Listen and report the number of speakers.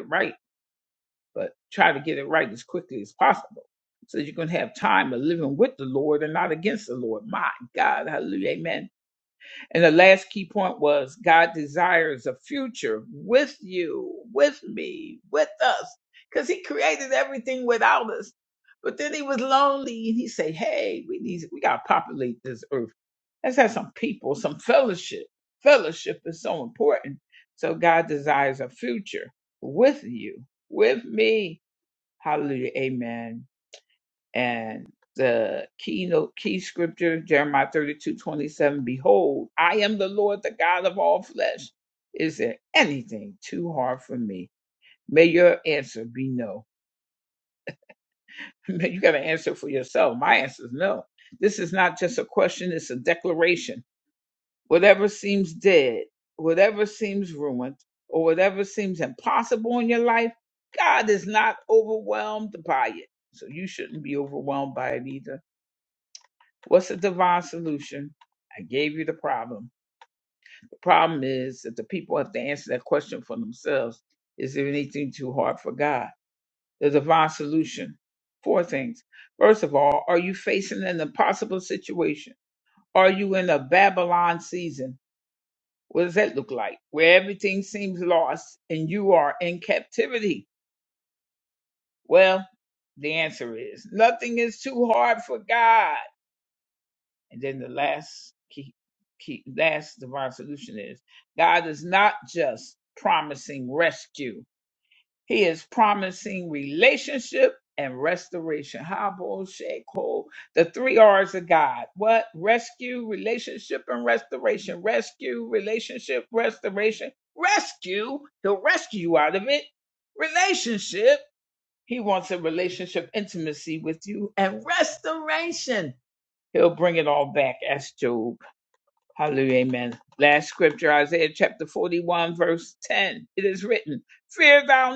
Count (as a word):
one